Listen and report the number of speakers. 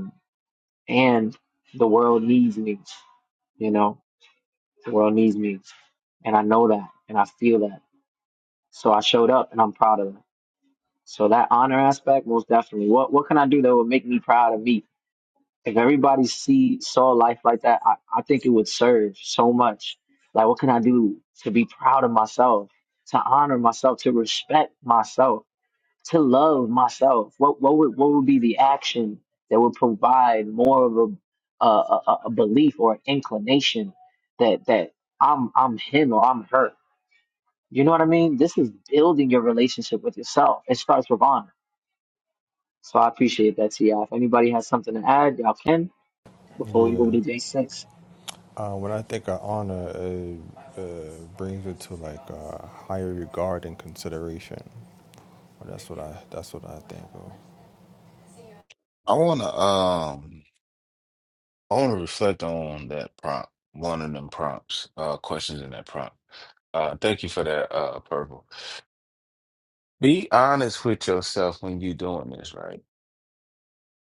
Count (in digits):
3